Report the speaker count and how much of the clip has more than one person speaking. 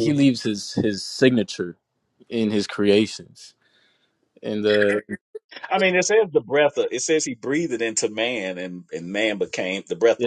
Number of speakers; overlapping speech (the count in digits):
2, about 1%